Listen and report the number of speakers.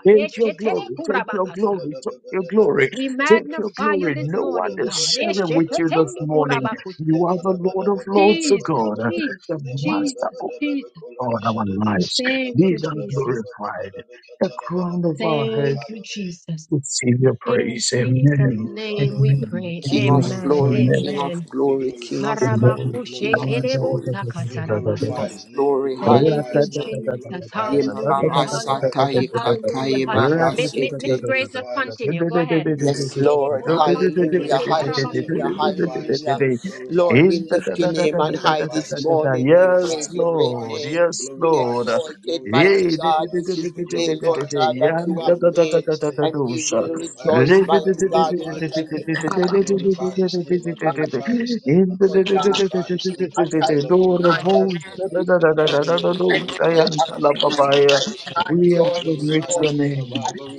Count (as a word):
four